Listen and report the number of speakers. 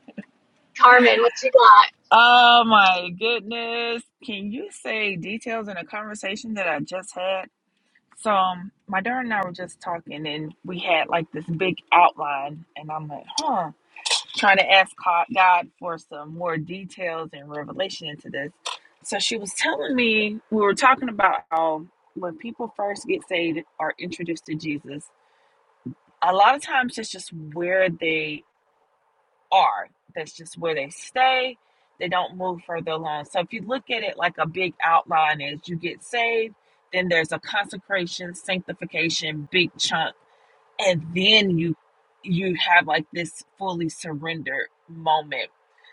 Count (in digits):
2